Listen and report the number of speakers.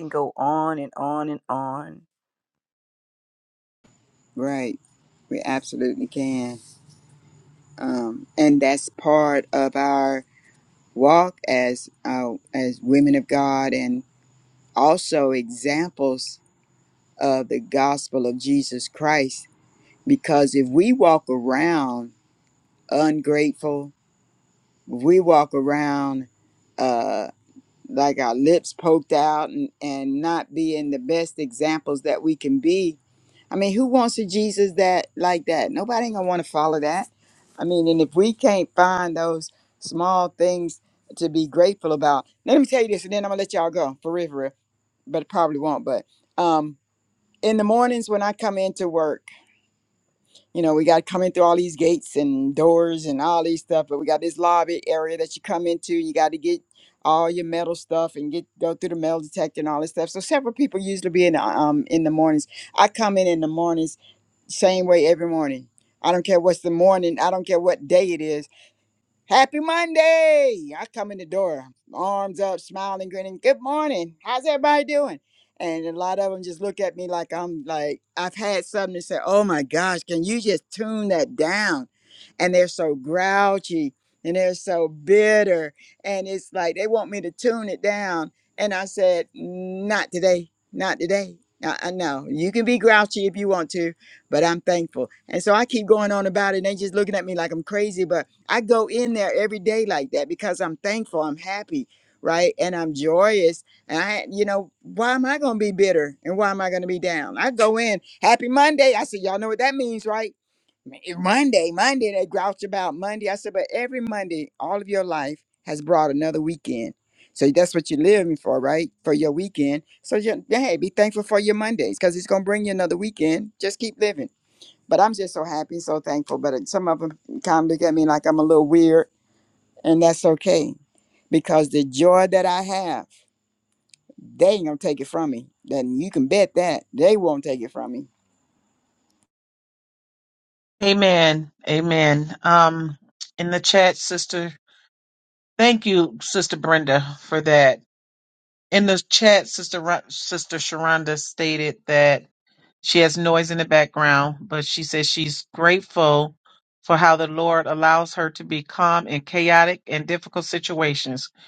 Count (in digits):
3